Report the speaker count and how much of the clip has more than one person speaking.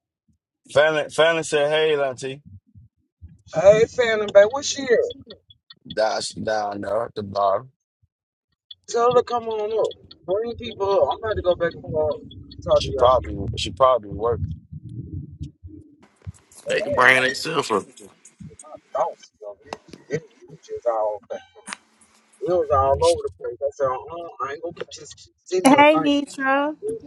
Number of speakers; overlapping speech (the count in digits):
4, about 4%